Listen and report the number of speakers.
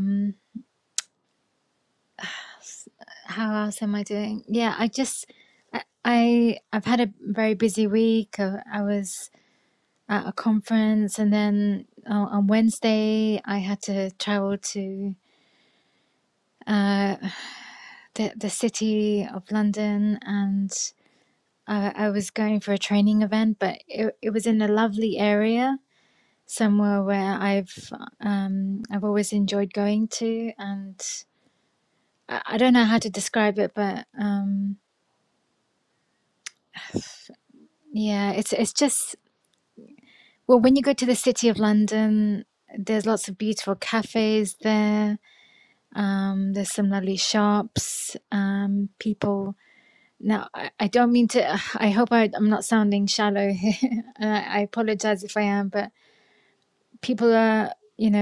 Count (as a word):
one